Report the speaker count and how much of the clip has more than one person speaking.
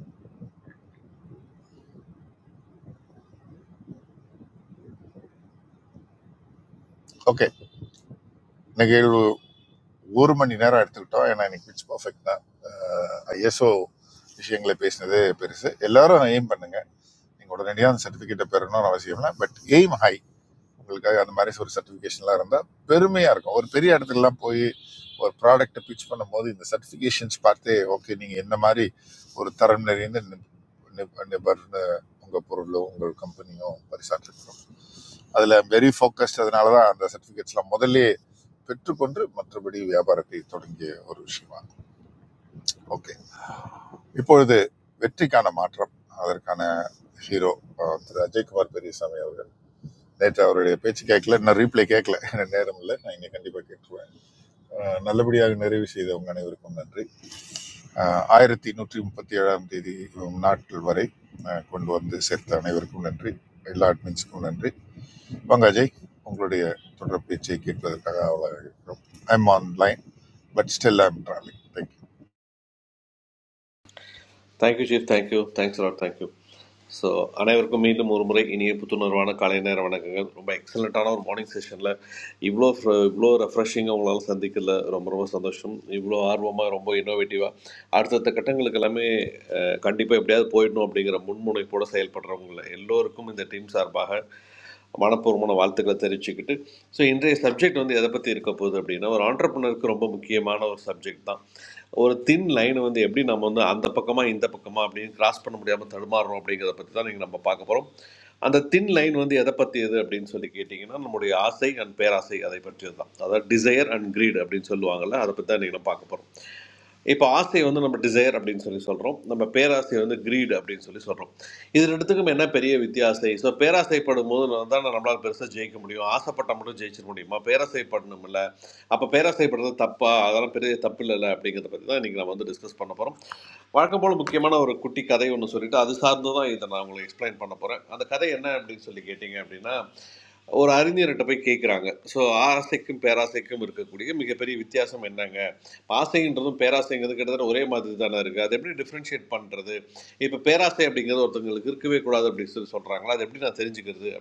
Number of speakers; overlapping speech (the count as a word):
two, no overlap